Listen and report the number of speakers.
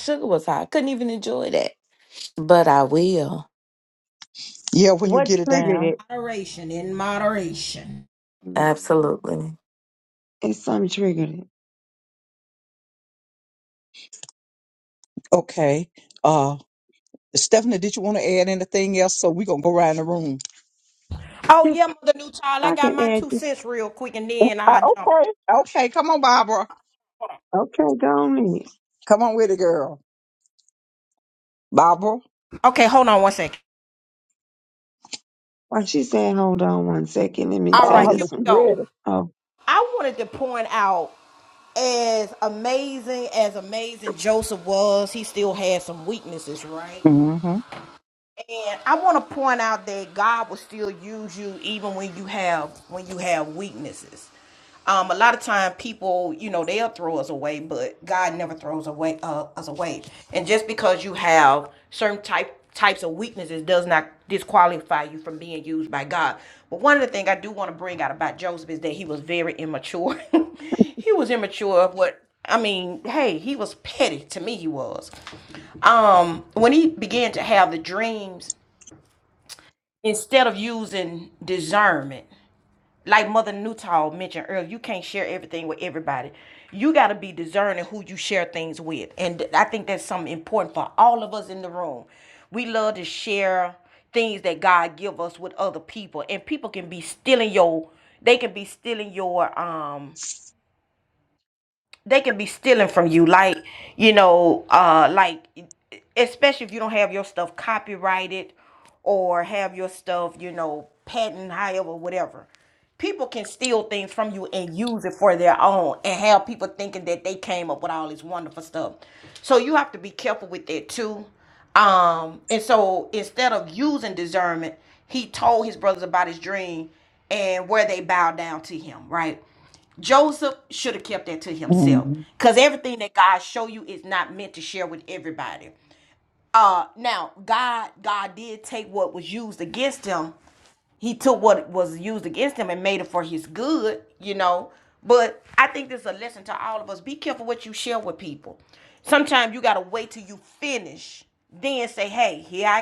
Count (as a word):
four